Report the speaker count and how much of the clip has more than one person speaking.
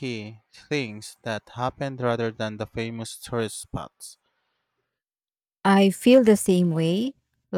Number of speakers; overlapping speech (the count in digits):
2, no overlap